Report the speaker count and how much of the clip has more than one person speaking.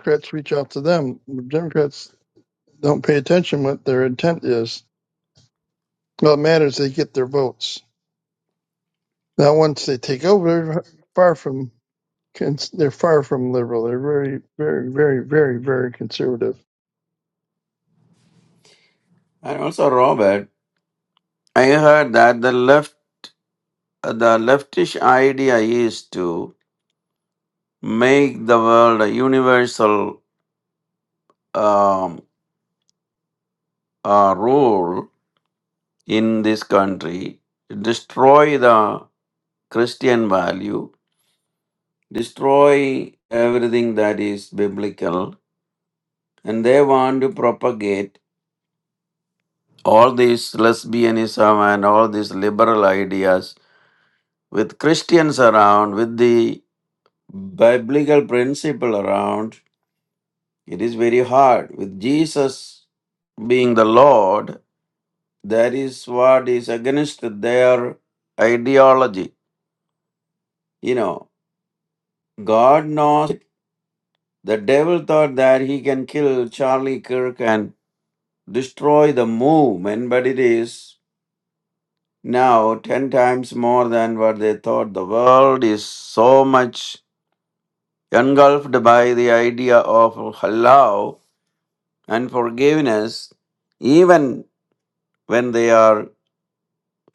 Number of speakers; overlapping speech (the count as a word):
two, no overlap